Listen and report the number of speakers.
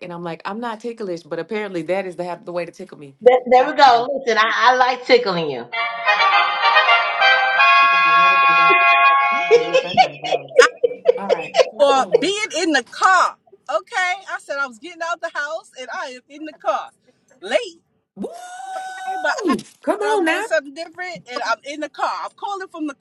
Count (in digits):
3